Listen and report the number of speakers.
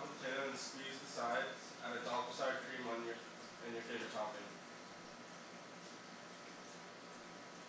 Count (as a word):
one